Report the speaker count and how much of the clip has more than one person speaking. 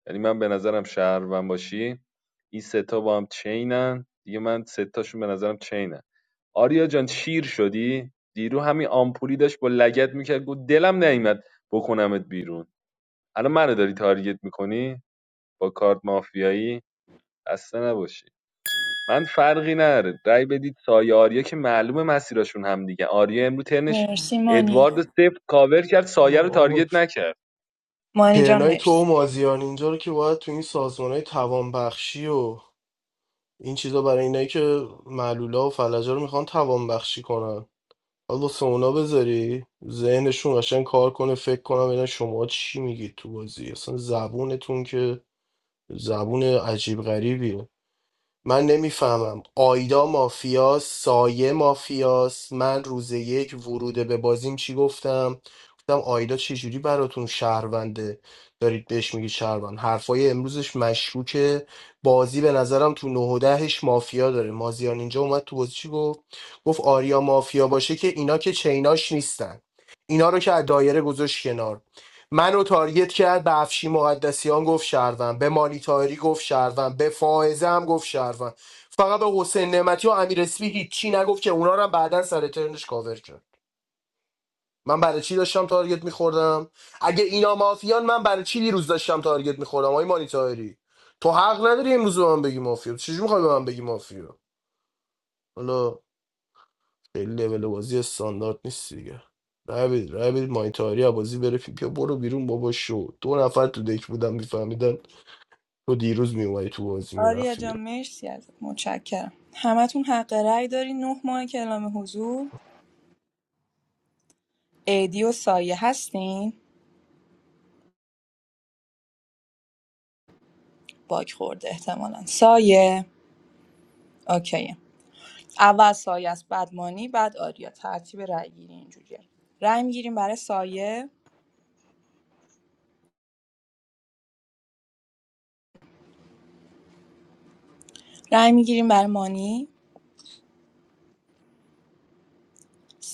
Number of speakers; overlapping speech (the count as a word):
three, about 1%